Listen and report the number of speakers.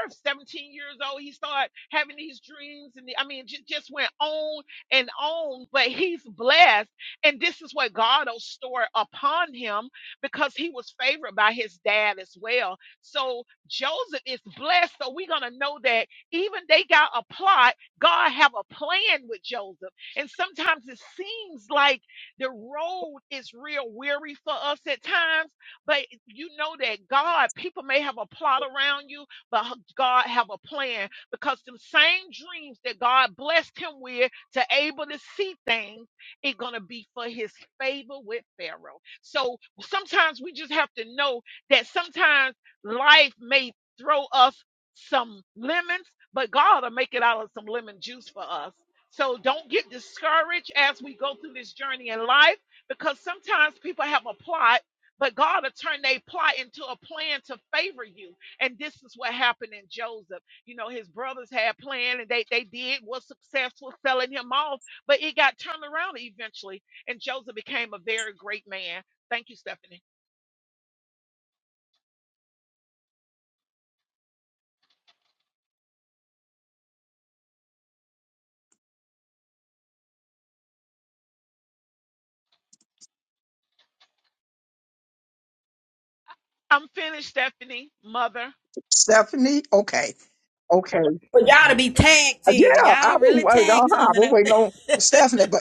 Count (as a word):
three